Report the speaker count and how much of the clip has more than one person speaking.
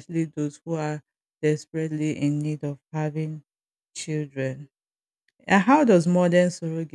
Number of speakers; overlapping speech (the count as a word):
one, no overlap